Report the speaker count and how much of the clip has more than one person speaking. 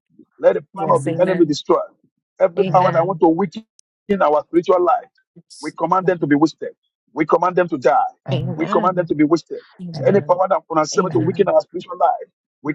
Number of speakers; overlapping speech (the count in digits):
2, about 21%